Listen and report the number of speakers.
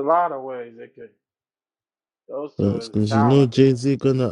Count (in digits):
2